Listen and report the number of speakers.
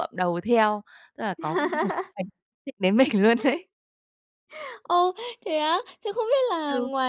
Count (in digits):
2